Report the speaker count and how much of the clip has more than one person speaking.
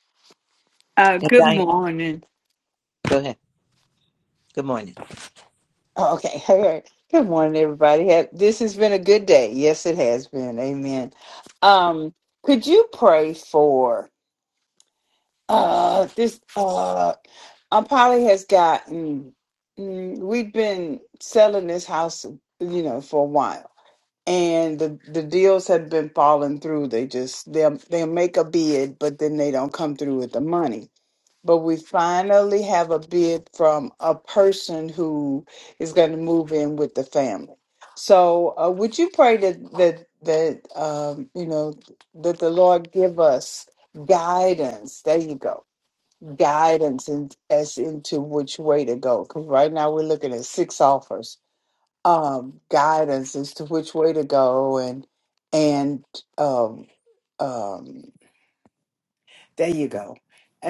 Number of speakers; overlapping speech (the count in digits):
2, about 1%